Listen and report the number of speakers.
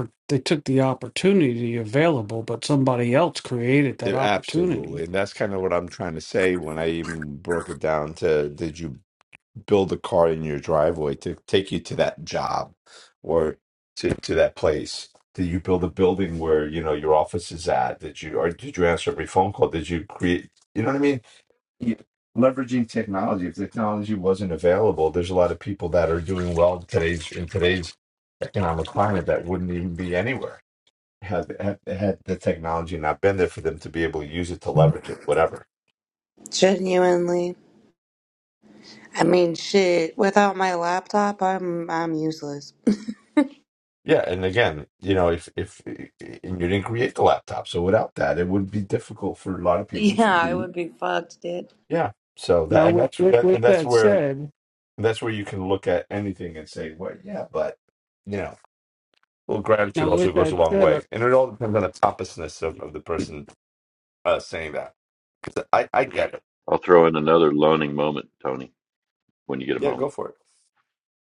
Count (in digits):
4